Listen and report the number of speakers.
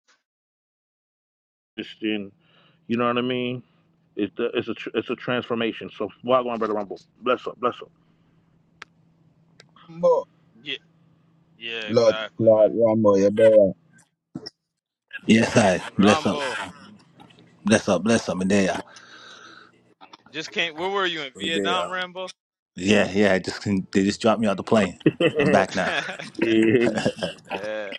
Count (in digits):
4